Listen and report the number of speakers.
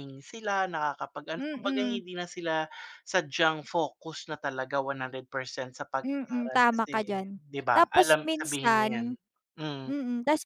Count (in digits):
2